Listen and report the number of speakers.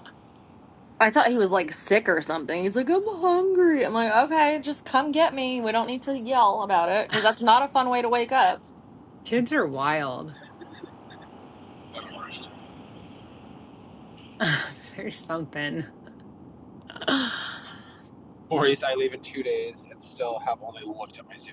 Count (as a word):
three